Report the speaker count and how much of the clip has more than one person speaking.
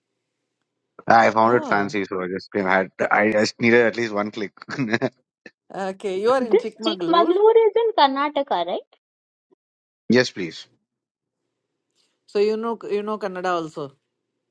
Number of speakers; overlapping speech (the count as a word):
three, about 10%